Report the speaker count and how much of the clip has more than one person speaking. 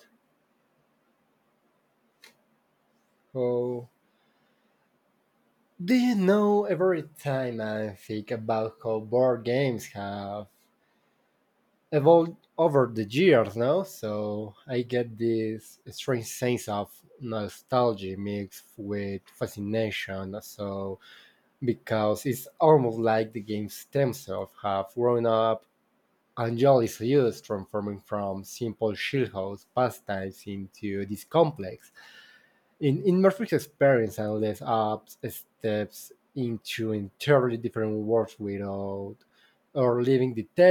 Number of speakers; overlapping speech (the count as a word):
one, no overlap